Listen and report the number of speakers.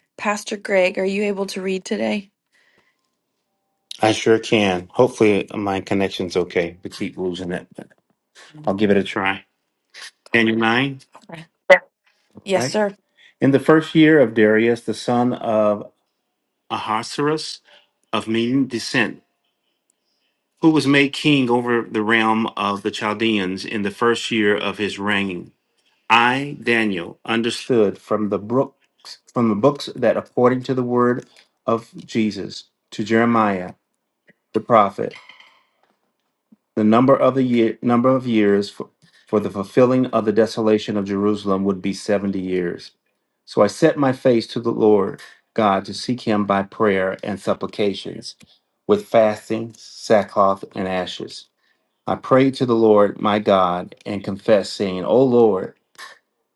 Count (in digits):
2